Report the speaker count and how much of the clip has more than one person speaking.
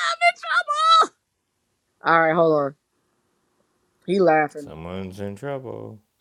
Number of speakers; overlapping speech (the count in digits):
2, no overlap